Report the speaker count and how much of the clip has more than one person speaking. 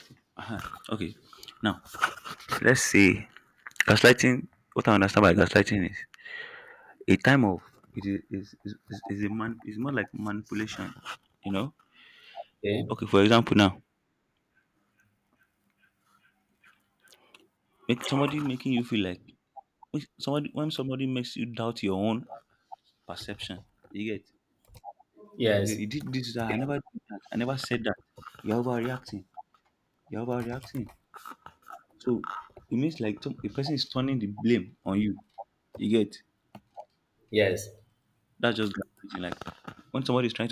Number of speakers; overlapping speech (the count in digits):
2, about 1%